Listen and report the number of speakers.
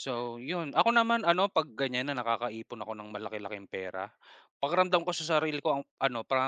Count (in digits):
1